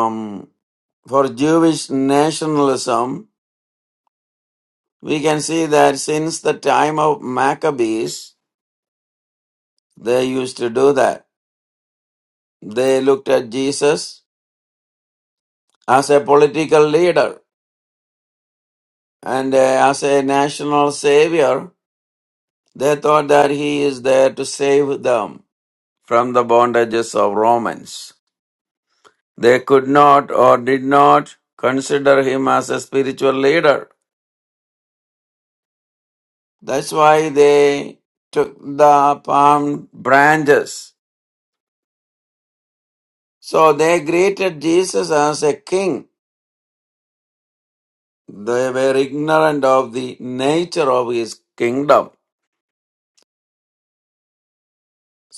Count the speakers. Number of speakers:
one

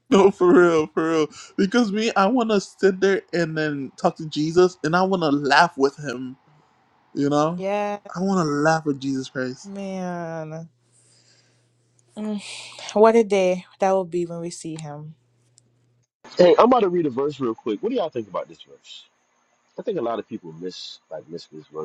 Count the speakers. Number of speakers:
three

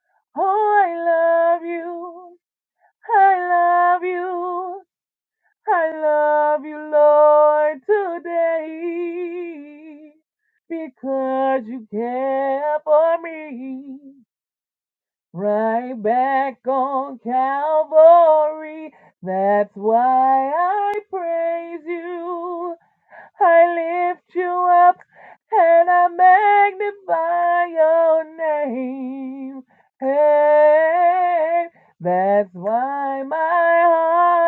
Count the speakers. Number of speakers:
one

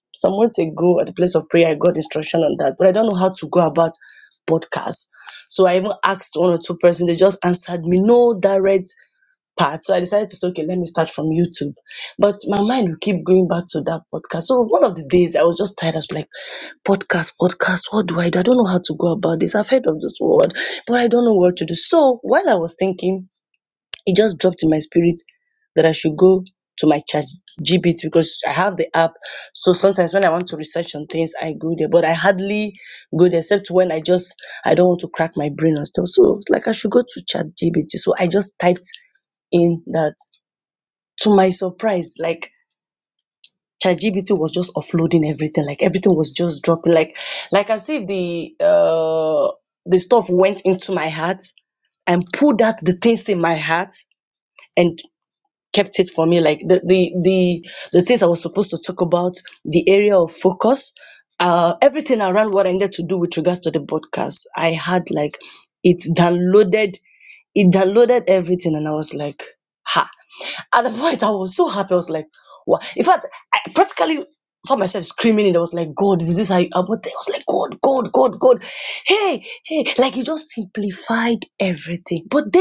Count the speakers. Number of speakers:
one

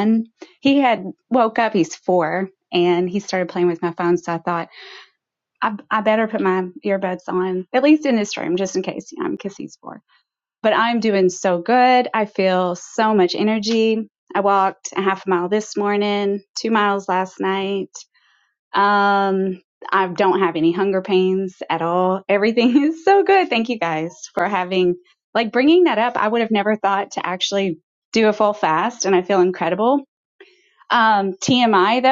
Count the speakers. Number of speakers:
one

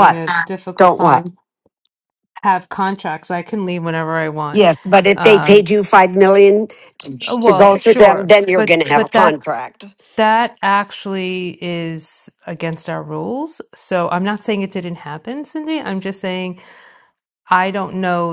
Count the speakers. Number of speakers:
two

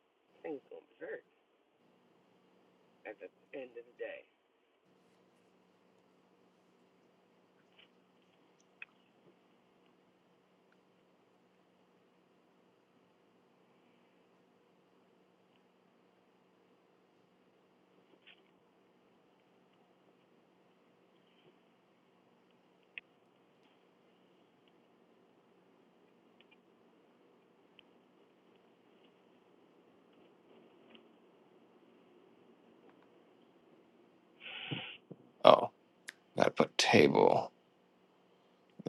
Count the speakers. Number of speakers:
two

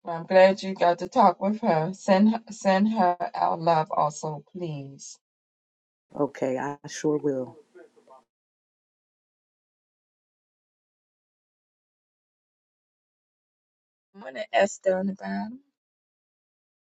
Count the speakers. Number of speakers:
two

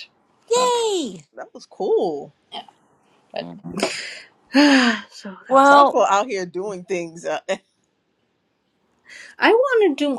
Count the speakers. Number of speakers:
three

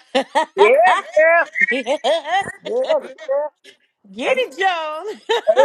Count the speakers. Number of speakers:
two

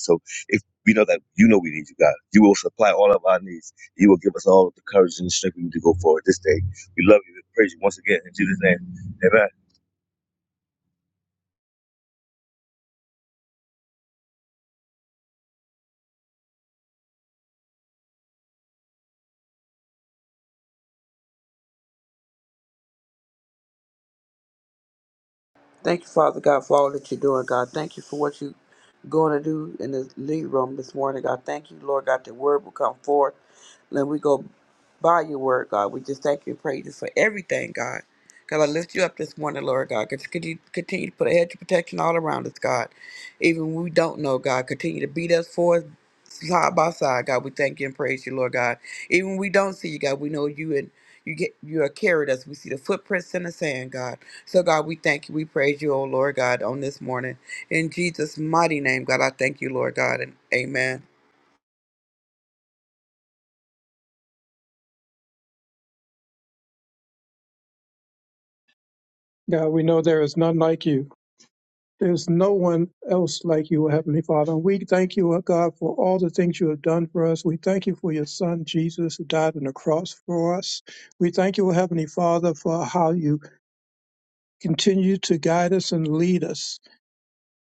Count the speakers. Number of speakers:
three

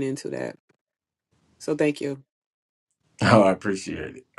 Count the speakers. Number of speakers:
two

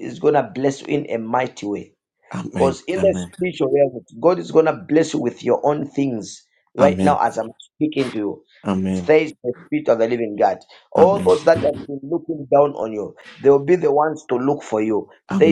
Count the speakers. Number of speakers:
two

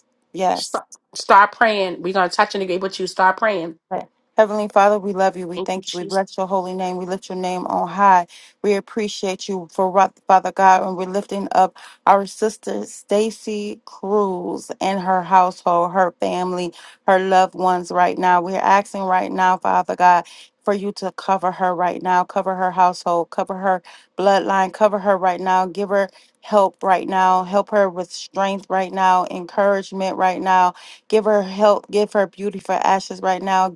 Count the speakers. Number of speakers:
two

